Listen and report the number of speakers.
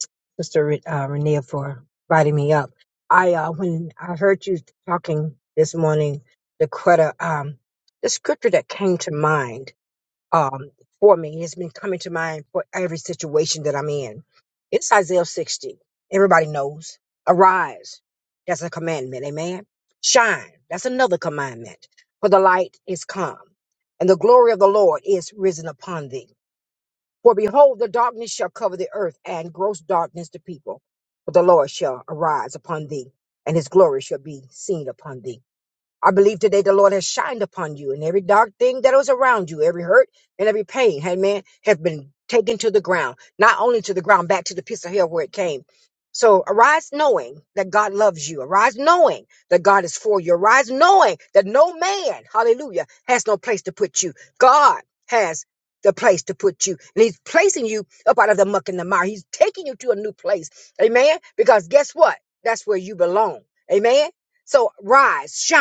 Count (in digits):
1